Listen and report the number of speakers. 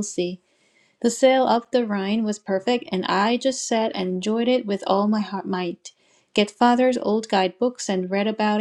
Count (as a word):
one